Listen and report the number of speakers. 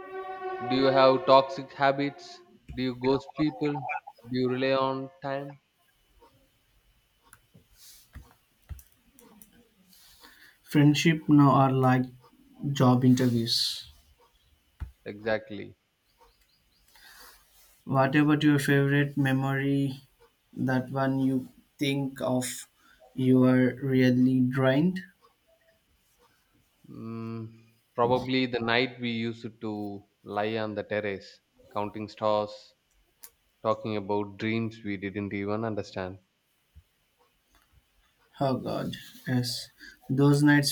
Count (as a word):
two